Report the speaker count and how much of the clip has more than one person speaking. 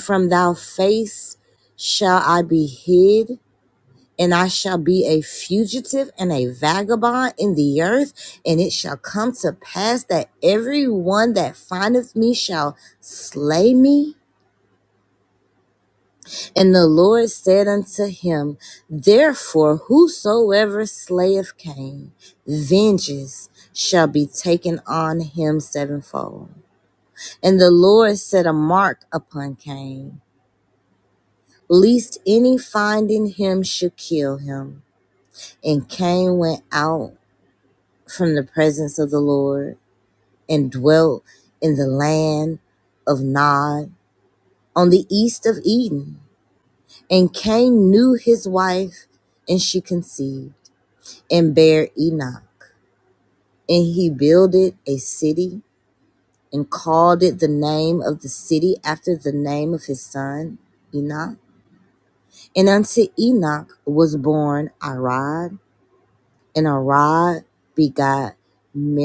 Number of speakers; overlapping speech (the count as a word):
one, no overlap